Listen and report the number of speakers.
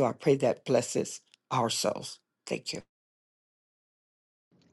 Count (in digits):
1